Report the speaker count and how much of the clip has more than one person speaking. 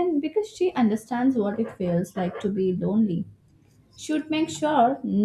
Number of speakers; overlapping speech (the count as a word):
one, no overlap